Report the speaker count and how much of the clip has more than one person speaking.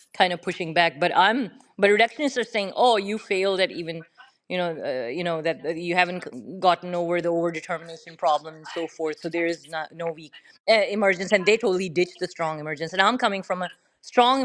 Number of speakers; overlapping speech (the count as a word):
one, no overlap